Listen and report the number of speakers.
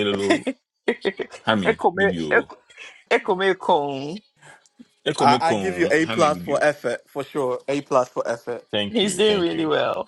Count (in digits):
3